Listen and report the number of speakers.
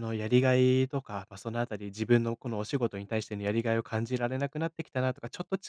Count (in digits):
1